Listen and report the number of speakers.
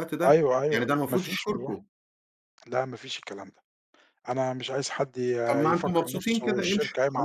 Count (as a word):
two